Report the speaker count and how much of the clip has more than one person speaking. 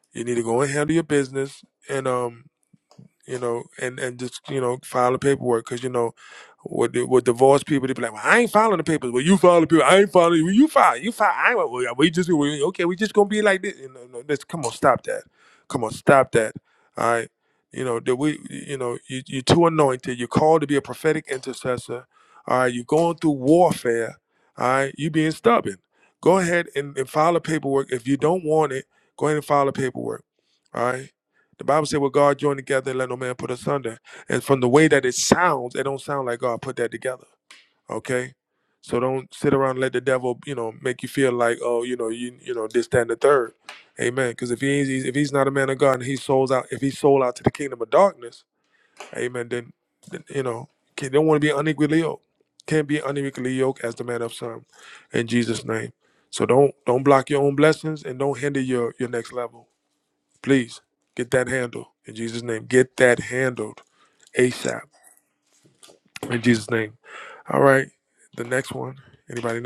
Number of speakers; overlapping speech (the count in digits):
1, no overlap